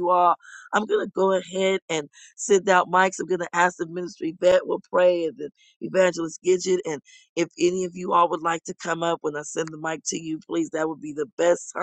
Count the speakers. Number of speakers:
1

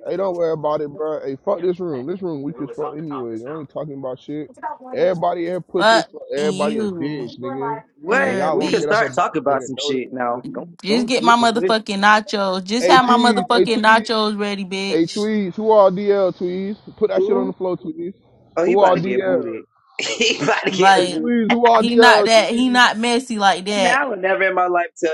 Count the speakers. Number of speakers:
3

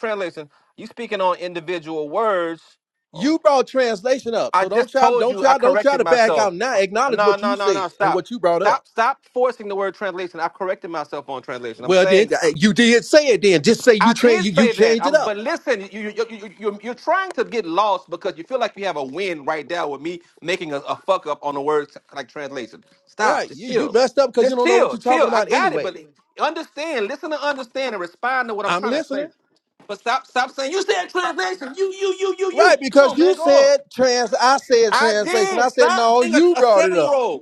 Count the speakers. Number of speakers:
2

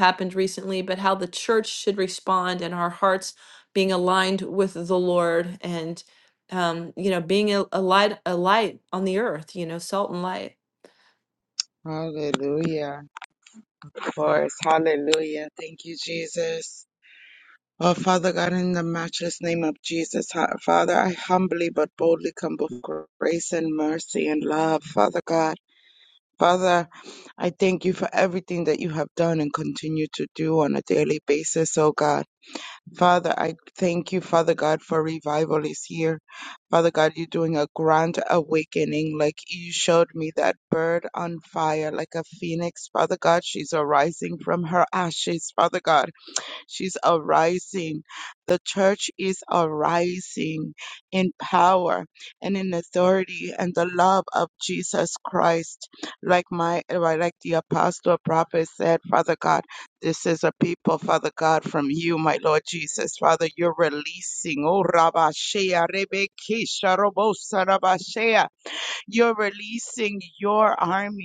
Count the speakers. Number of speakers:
2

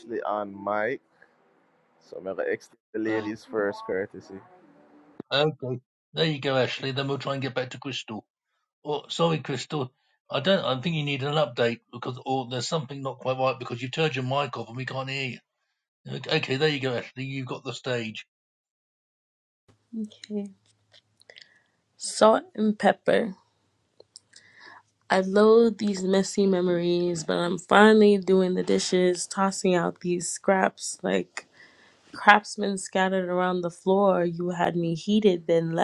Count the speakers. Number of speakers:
3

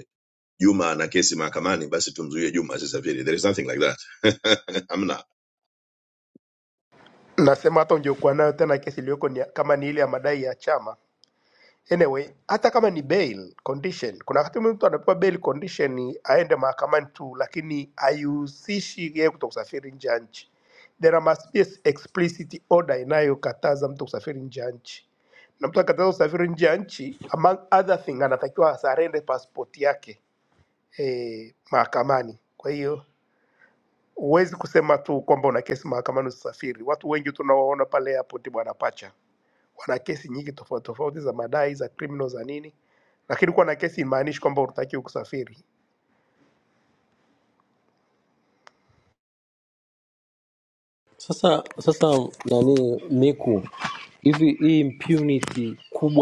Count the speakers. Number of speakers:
3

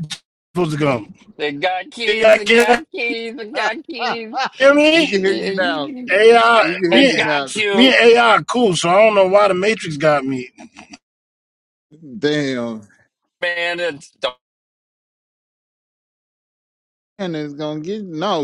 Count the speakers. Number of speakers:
3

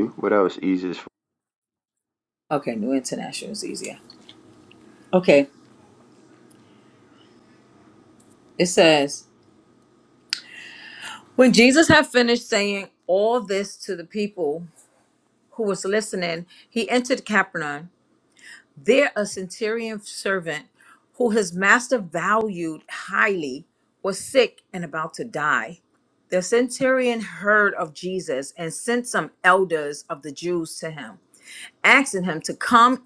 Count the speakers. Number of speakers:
2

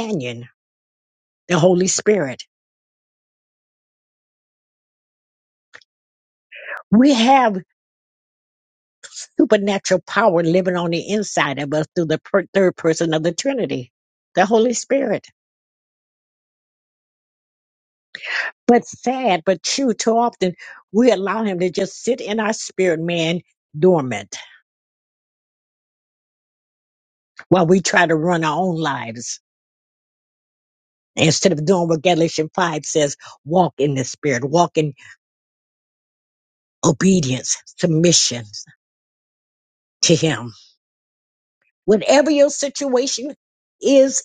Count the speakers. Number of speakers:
1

